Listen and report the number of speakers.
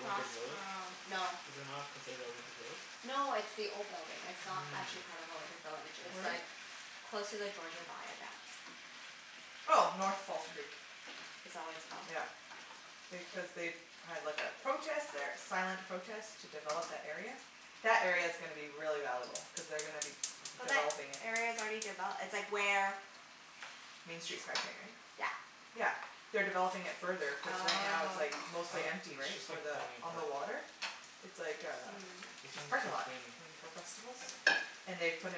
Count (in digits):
3